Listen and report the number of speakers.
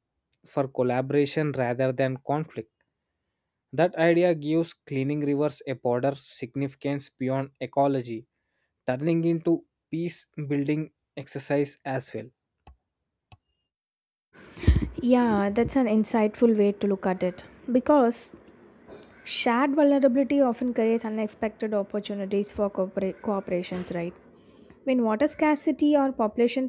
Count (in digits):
2